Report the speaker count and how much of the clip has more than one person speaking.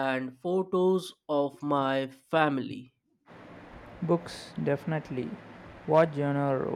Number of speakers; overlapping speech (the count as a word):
two, no overlap